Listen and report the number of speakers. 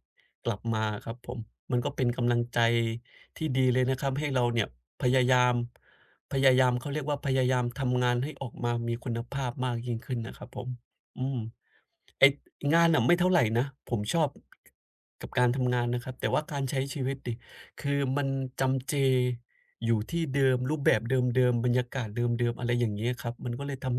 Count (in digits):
1